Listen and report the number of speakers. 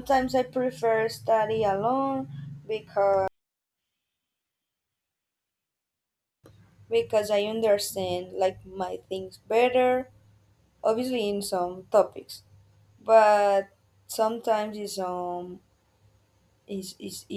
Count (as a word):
one